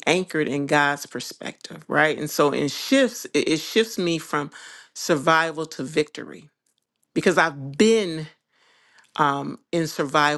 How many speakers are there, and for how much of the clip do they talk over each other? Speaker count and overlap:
one, no overlap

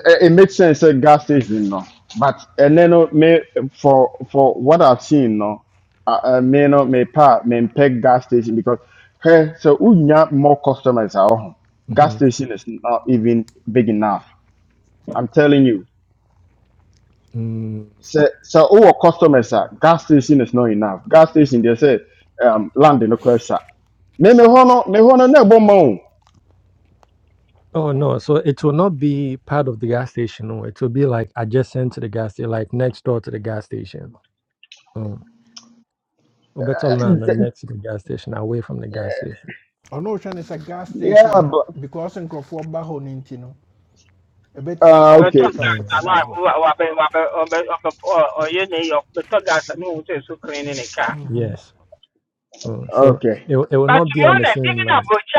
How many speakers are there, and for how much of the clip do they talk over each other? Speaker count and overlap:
four, about 8%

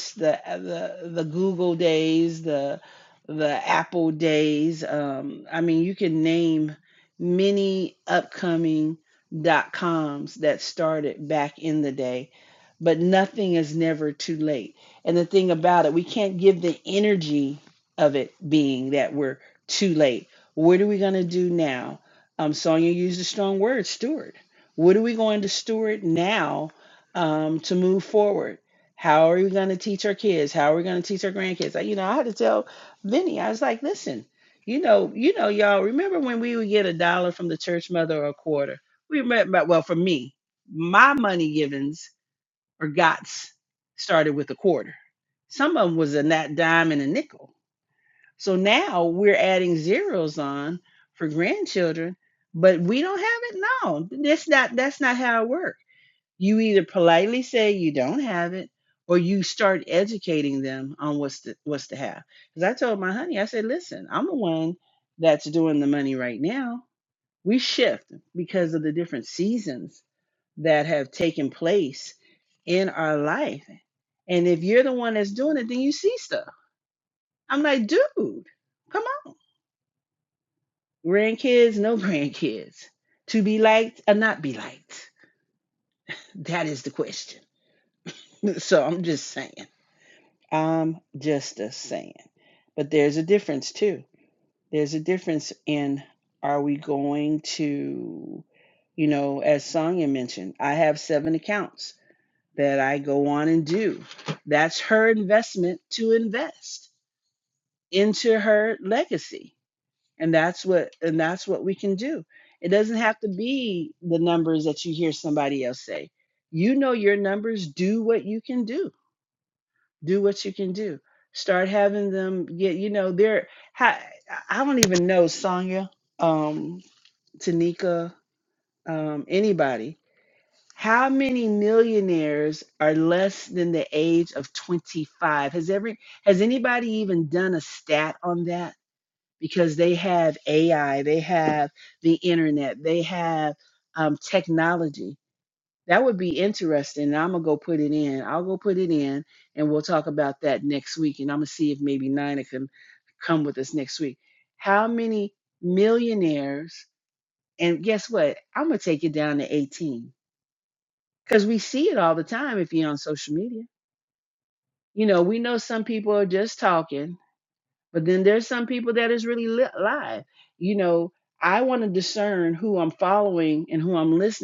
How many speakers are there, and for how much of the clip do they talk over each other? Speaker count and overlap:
one, no overlap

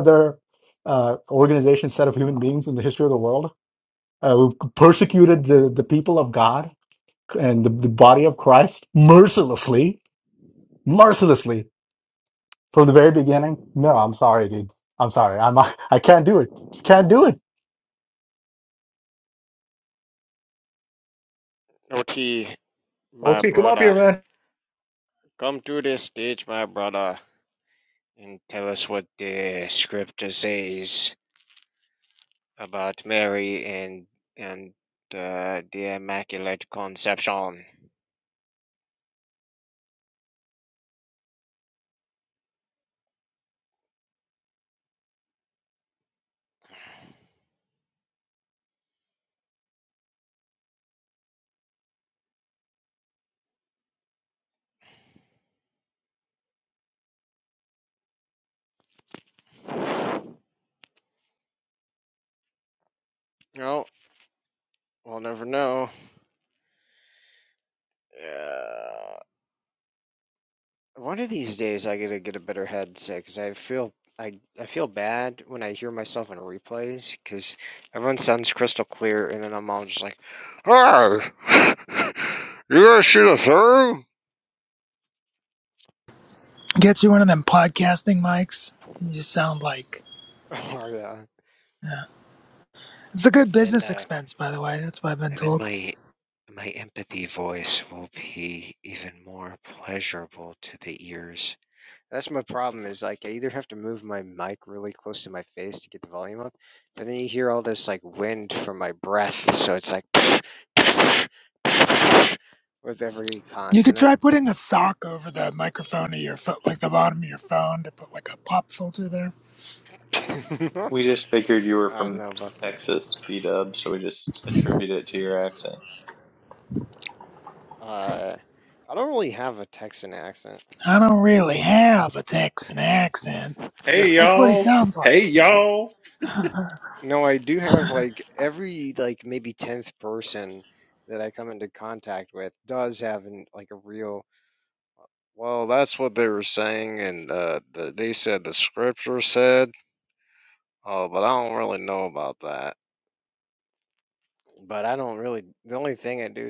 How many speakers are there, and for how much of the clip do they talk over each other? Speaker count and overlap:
four, about 2%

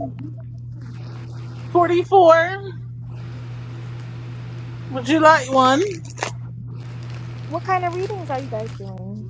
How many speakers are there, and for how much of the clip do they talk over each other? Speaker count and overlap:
two, no overlap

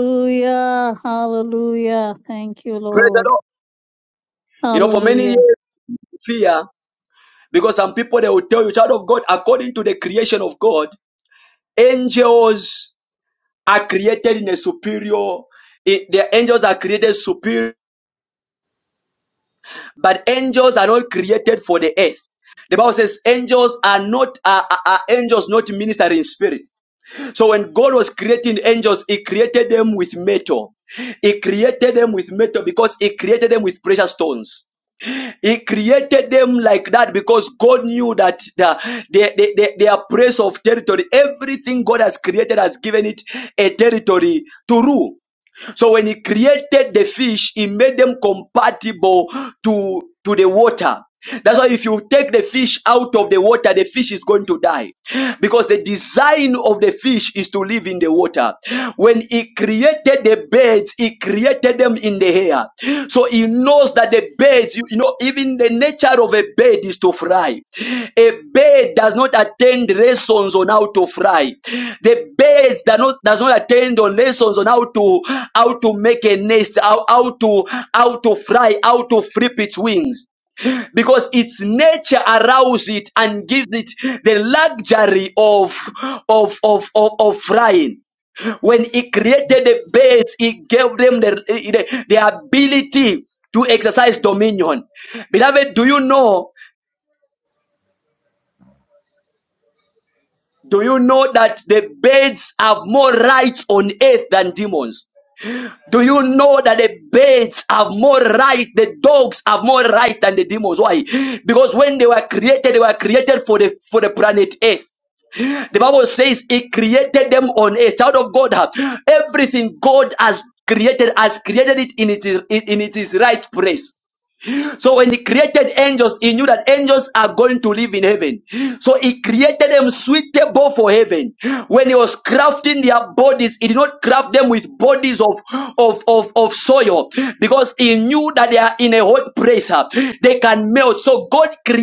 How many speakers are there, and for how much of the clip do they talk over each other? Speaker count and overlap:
two, about 1%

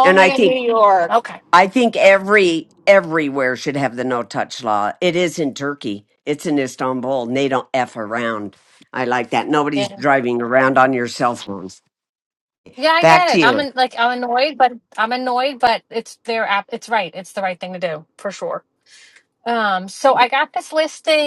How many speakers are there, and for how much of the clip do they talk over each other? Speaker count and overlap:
three, about 7%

